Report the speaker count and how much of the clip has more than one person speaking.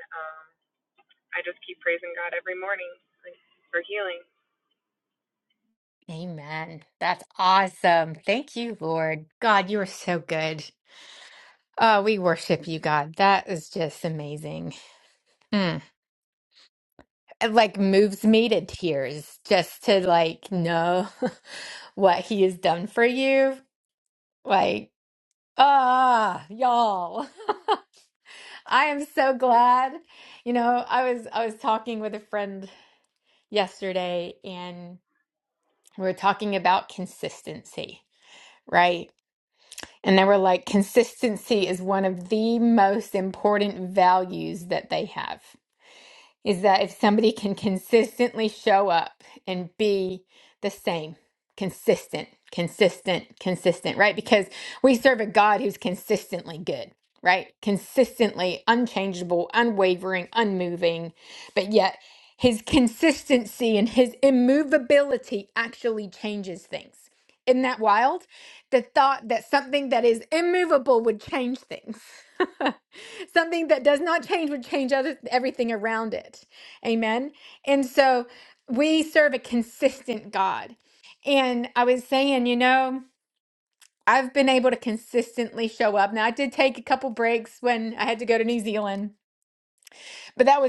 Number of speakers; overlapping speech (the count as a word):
two, no overlap